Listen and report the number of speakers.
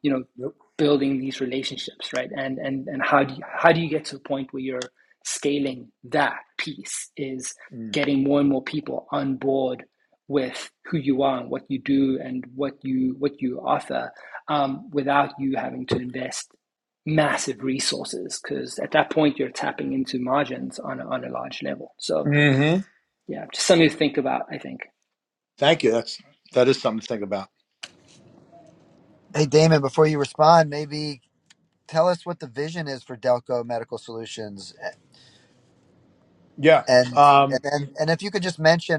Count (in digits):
3